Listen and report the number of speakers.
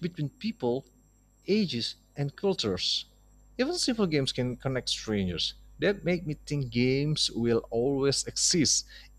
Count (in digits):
1